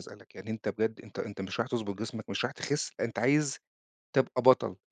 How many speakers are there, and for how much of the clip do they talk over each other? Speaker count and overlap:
one, no overlap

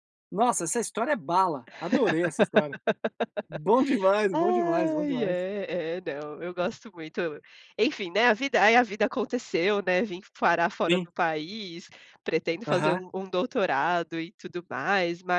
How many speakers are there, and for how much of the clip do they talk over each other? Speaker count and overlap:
two, about 10%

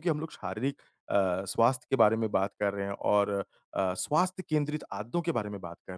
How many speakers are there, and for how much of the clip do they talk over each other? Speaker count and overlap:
one, no overlap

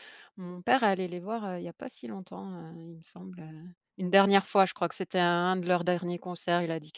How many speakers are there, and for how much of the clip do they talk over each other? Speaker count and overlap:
one, no overlap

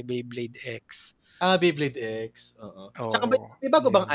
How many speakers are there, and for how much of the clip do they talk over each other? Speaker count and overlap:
two, about 28%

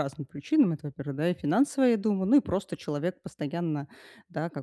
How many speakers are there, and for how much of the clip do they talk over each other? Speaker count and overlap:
one, no overlap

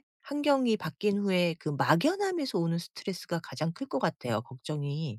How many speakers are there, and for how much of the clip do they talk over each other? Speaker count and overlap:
one, no overlap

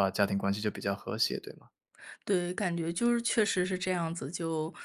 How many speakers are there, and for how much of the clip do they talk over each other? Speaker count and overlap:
two, no overlap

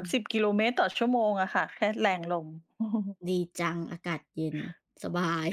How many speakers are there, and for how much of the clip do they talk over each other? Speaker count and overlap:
two, about 2%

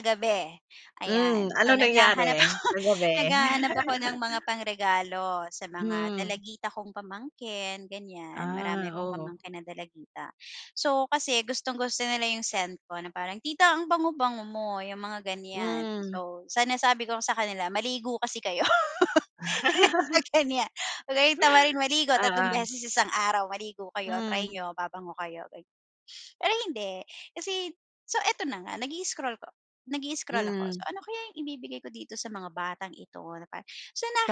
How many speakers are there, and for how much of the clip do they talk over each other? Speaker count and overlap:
two, about 16%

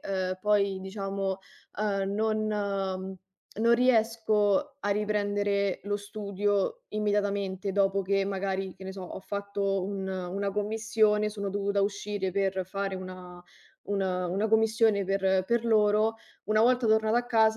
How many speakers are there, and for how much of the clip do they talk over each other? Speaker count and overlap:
one, no overlap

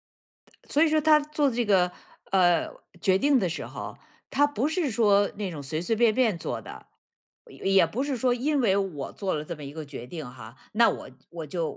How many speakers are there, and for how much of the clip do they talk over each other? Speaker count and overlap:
one, no overlap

